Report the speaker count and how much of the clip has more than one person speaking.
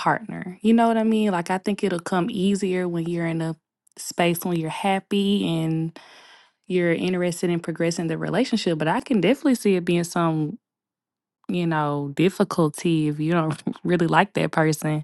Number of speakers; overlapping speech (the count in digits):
1, no overlap